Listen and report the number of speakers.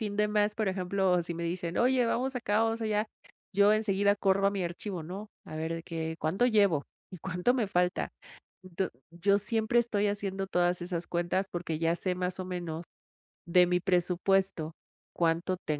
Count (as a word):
one